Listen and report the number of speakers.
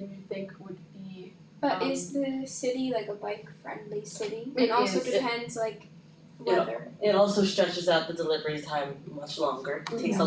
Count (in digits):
3